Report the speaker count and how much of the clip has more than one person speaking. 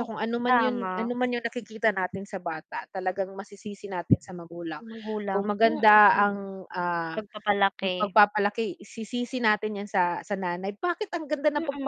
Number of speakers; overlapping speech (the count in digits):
2, about 14%